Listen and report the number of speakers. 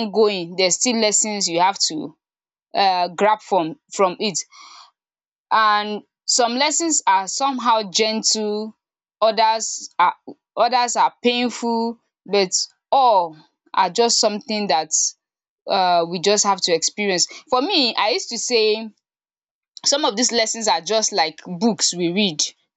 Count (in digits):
1